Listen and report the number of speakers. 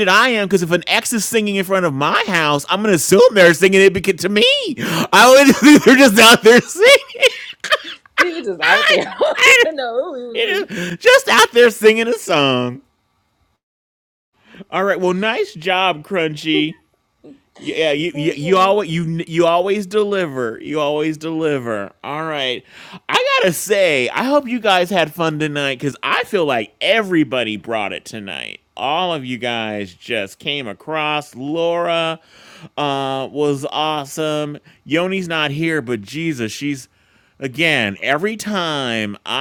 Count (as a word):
two